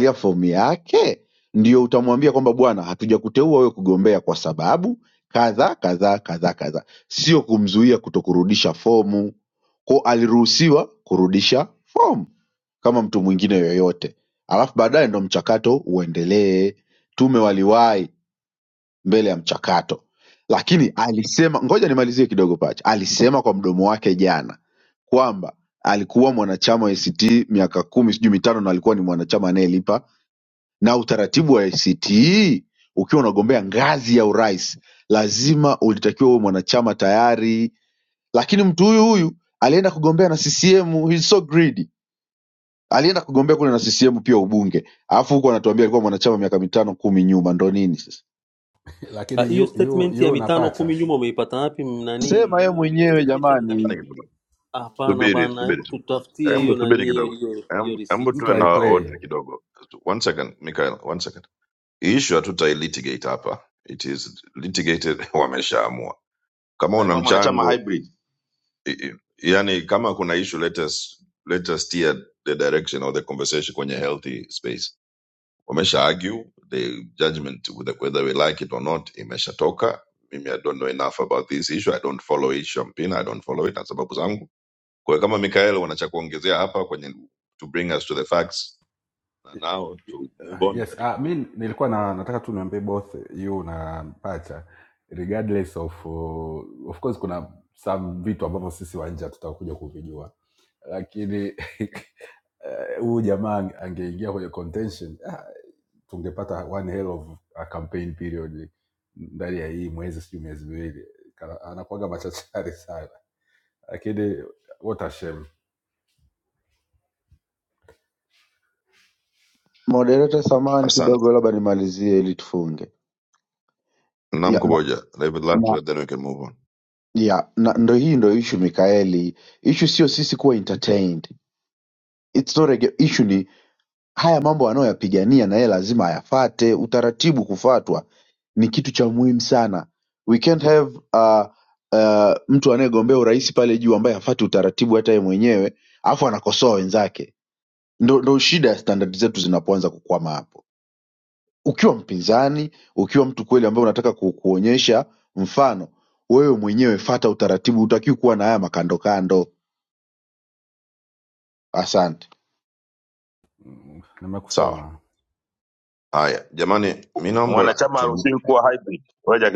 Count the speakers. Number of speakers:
5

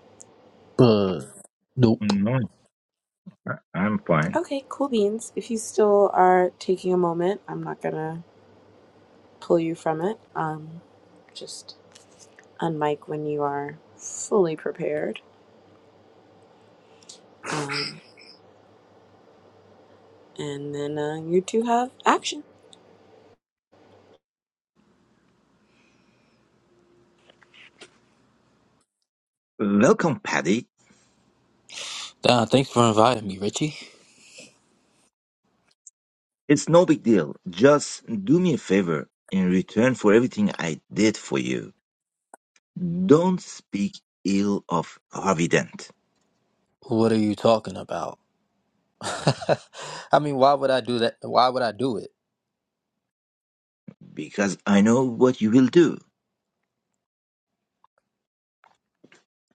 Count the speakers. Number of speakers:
3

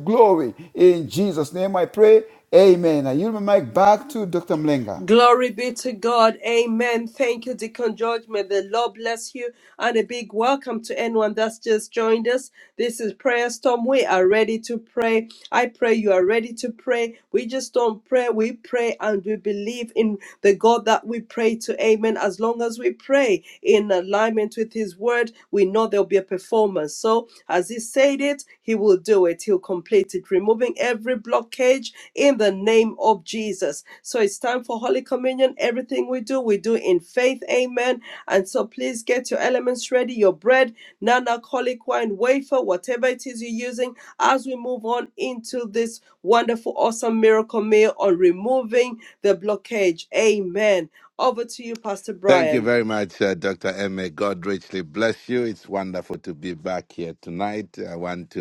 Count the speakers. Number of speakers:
3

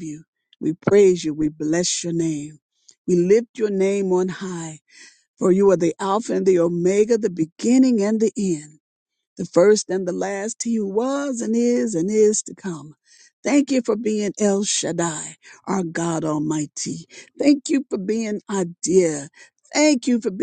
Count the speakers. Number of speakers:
1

